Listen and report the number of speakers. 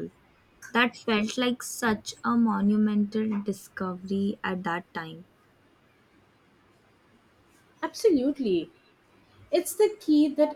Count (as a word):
two